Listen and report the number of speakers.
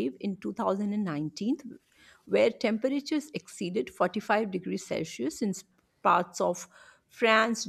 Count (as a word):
one